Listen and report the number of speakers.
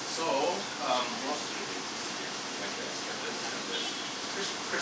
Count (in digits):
1